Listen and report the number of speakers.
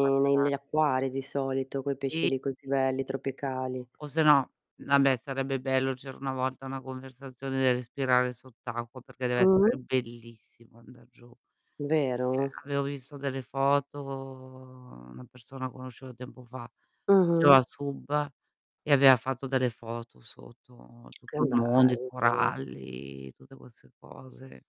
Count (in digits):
2